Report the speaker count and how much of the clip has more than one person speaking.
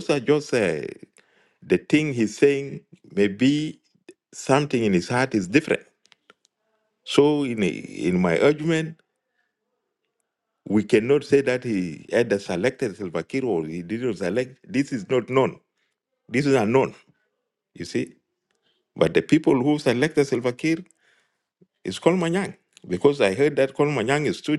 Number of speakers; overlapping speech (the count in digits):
1, no overlap